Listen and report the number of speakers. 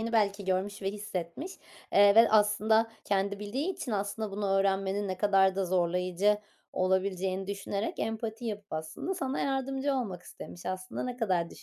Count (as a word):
one